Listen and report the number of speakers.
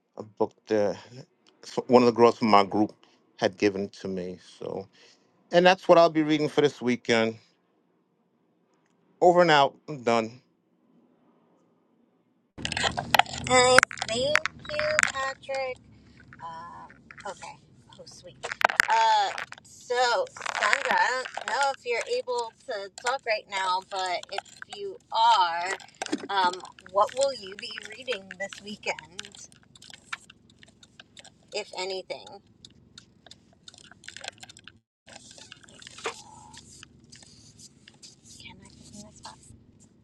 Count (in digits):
2